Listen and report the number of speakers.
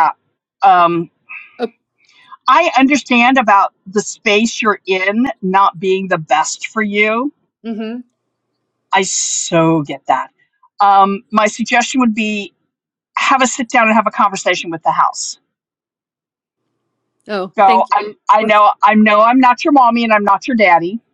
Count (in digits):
2